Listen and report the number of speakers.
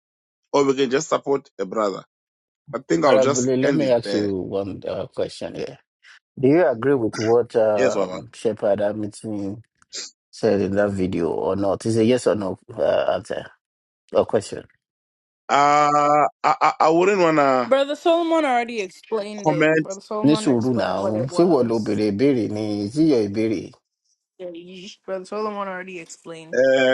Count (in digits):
3